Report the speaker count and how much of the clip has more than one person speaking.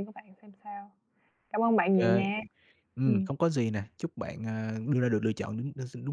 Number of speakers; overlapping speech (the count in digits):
2, about 8%